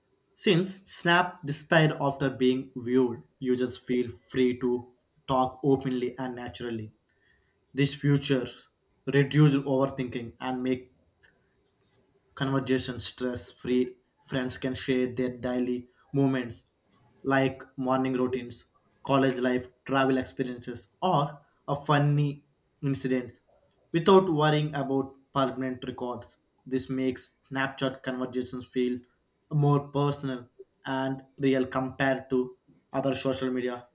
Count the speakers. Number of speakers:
1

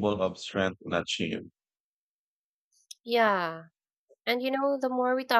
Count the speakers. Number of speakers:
2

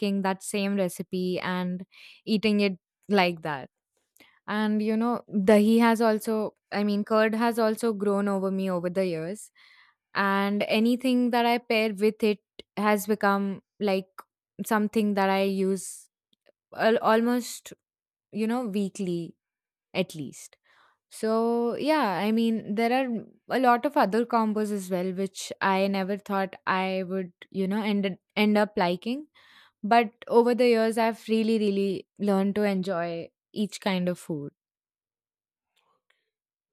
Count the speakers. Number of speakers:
1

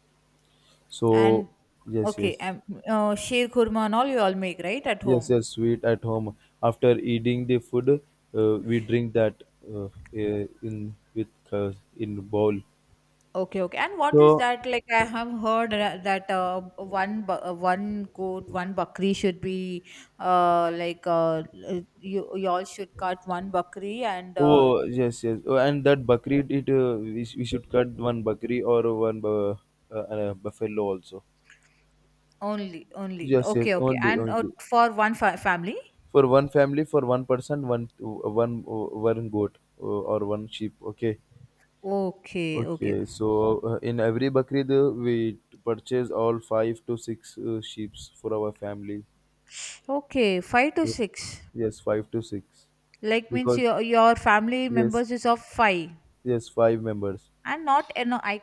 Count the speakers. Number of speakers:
2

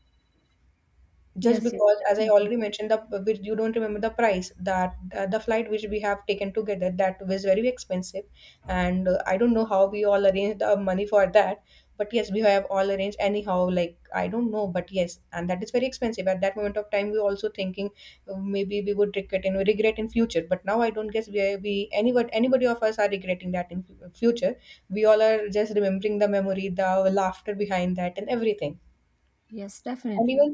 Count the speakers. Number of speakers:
2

